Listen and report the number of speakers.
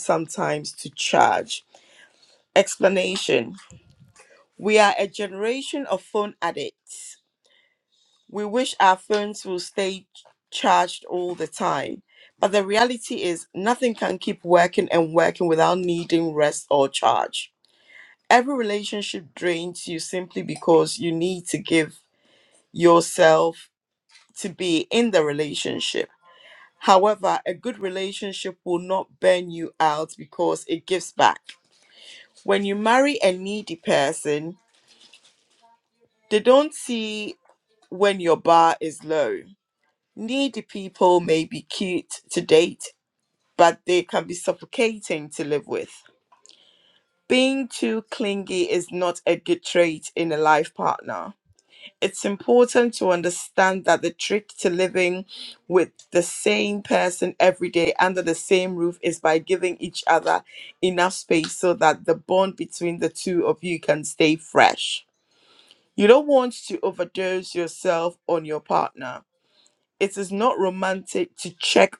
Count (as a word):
one